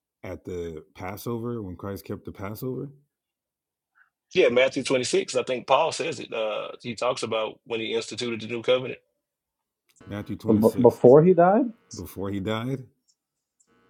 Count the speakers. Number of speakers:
3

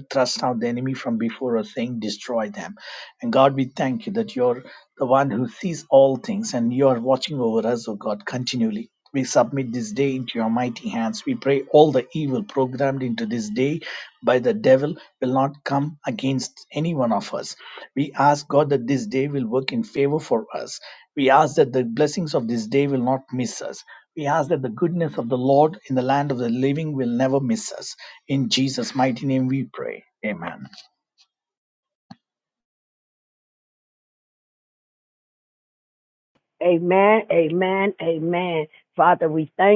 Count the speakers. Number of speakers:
2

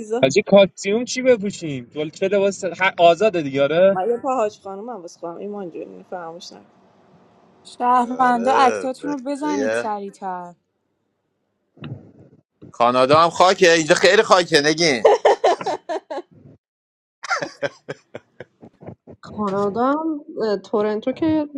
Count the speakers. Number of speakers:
5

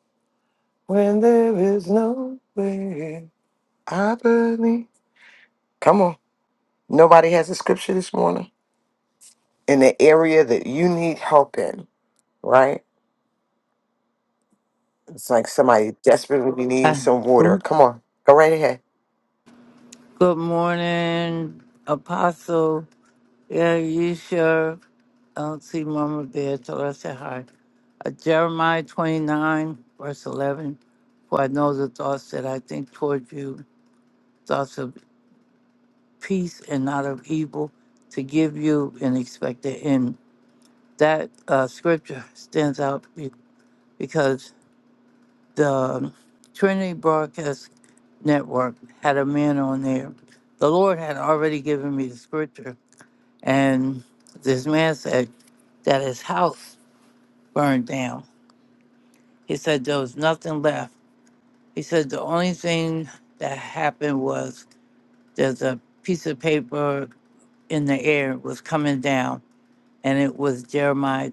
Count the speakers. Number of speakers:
2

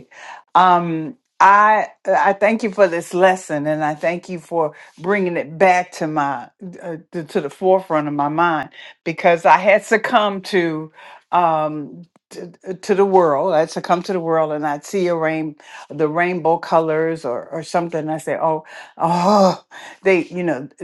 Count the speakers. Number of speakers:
1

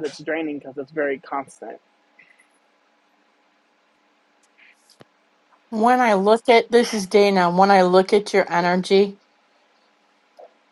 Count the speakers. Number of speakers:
2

